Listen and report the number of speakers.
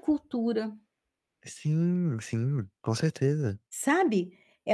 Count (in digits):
2